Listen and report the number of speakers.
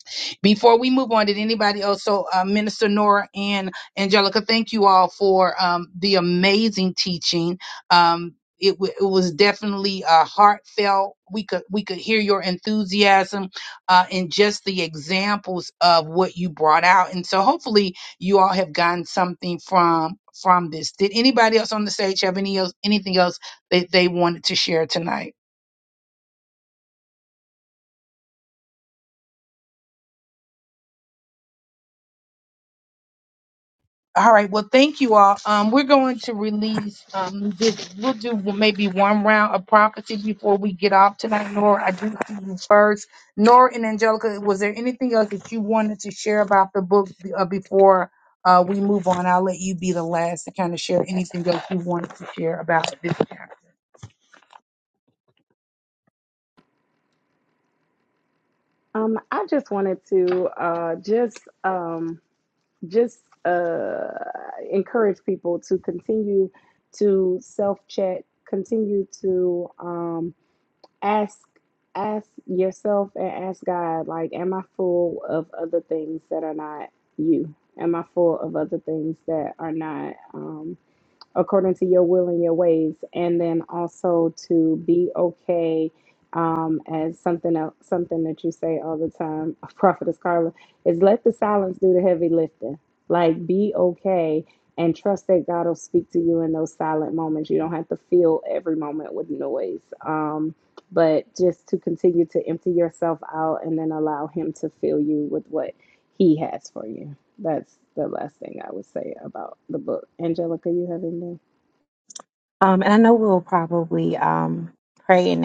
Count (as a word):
three